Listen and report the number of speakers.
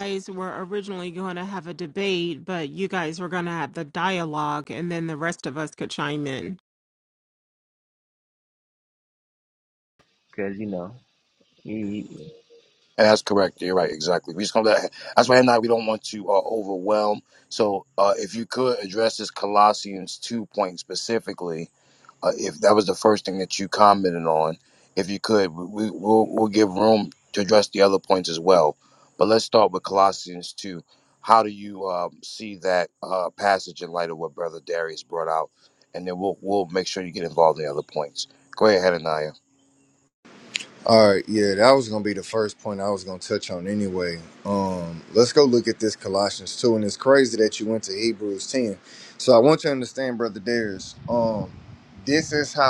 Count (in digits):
4